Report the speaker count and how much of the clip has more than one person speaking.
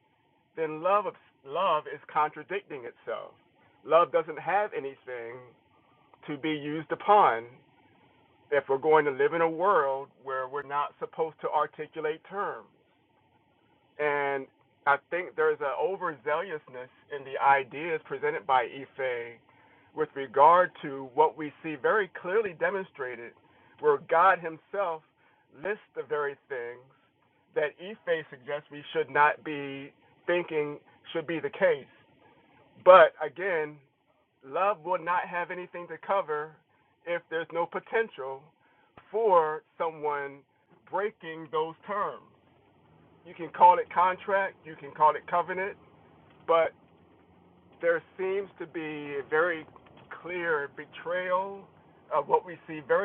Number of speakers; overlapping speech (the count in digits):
1, no overlap